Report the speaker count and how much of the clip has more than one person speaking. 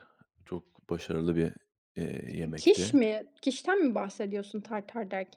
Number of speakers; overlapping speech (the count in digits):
2, about 10%